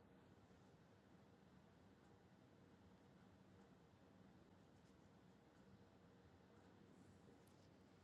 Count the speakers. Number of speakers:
0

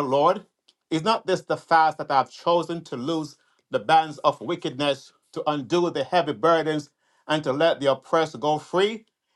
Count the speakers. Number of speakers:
1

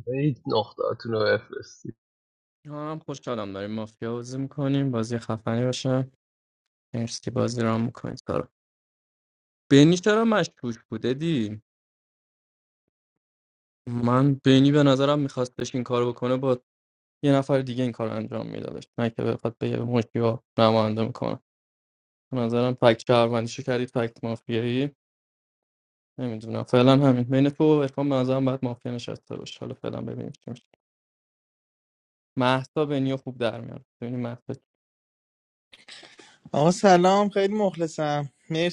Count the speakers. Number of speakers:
3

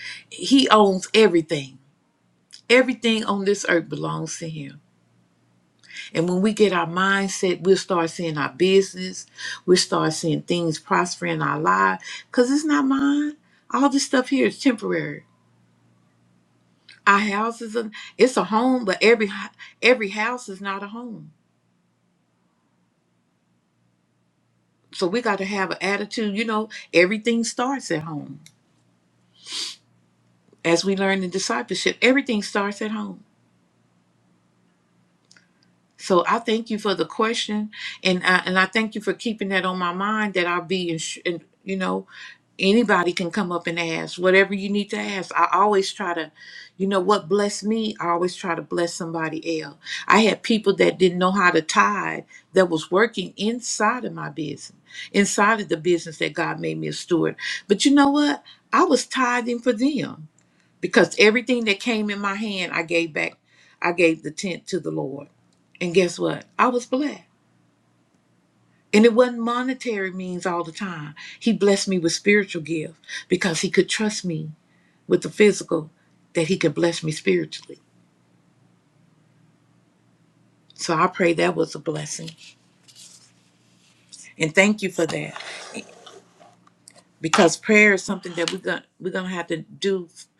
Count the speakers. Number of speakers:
1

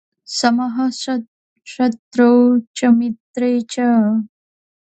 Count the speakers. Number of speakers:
1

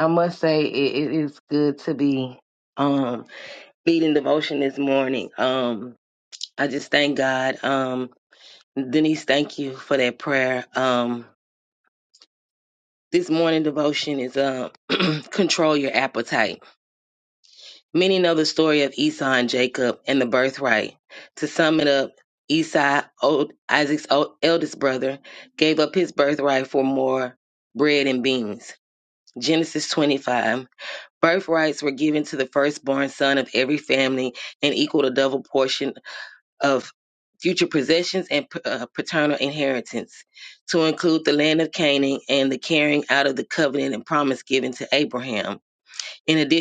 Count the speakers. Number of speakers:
1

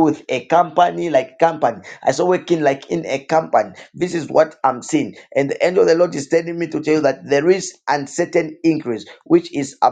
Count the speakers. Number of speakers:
1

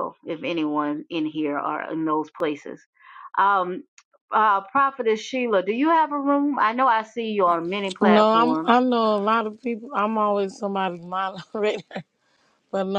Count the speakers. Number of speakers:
2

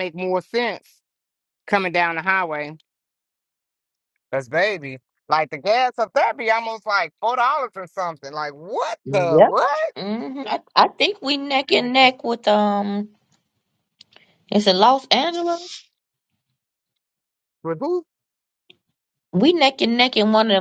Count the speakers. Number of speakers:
2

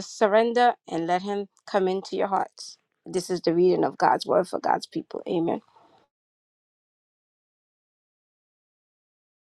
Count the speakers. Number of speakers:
1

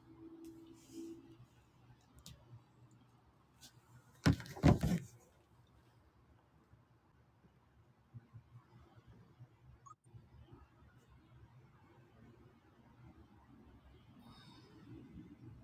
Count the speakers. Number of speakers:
0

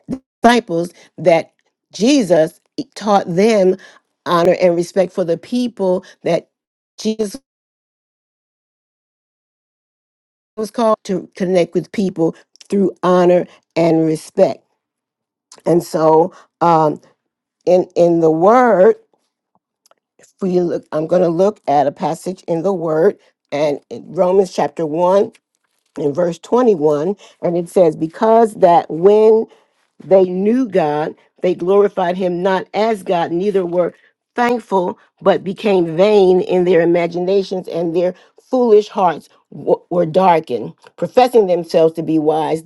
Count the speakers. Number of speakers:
1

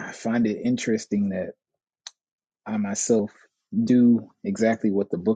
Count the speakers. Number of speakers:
1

